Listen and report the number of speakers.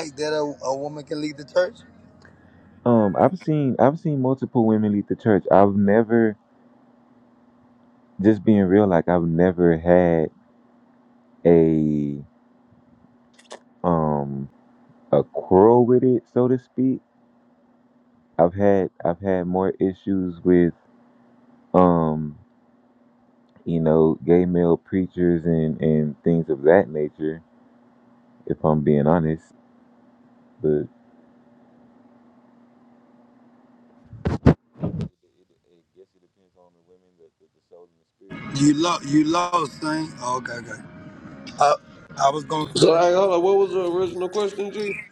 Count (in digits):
3